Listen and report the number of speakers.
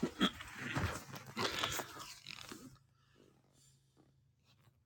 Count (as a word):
zero